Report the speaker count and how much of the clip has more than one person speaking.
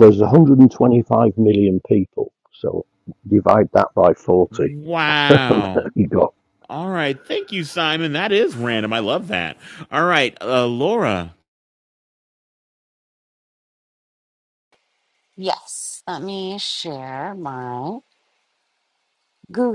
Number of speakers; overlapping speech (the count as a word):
three, under 1%